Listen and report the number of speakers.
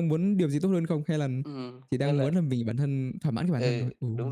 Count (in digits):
2